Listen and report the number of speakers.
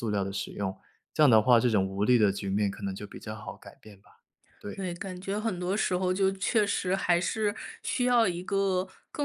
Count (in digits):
2